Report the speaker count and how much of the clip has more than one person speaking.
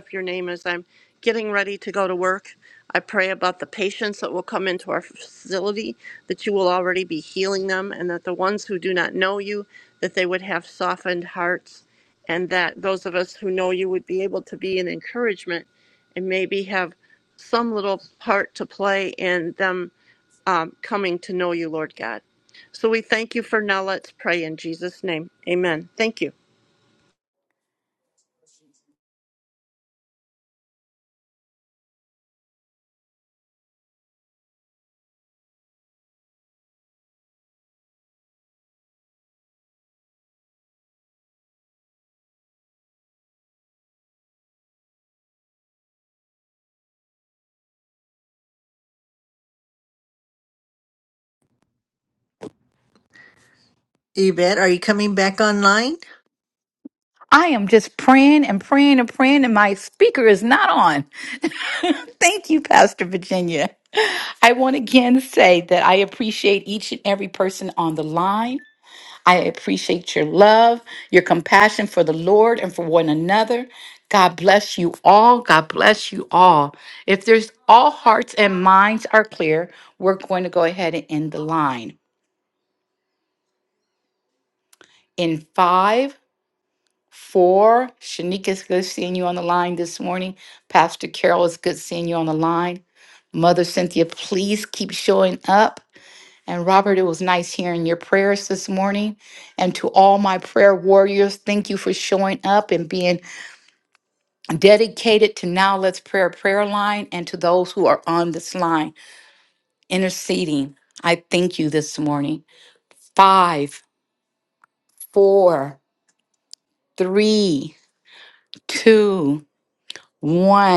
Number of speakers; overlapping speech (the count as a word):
three, no overlap